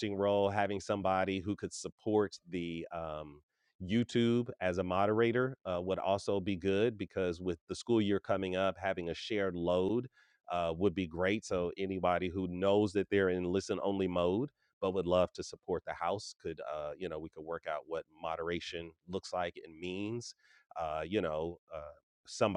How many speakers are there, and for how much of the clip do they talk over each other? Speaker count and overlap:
one, no overlap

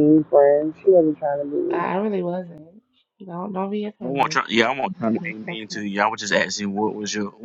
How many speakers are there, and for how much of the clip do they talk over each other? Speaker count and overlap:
three, about 14%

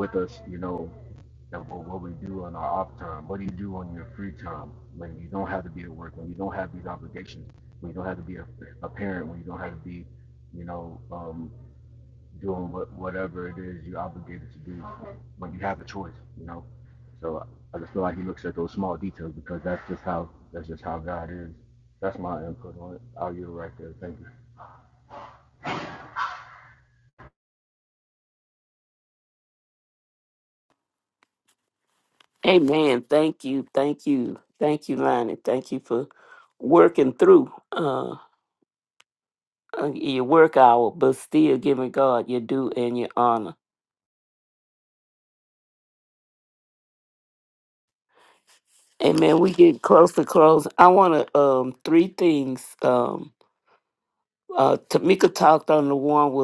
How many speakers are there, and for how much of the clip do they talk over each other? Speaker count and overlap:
two, no overlap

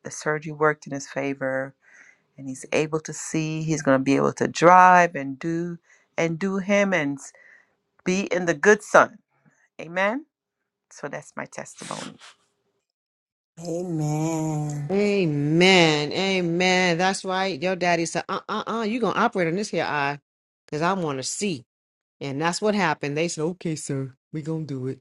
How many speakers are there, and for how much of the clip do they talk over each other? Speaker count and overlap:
three, no overlap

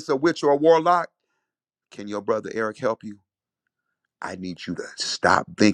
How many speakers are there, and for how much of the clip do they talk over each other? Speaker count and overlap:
one, no overlap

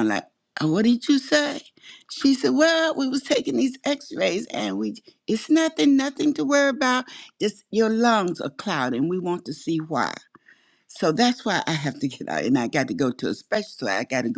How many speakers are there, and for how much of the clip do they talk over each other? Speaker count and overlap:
one, no overlap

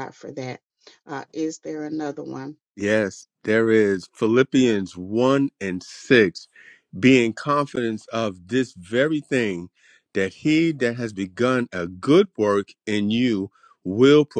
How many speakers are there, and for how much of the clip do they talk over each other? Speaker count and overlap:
two, no overlap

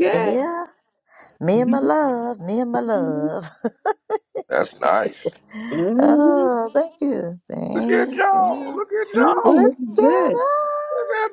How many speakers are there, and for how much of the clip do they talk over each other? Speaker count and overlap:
three, about 29%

